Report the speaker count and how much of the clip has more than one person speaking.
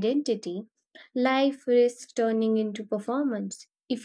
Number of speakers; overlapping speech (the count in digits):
1, no overlap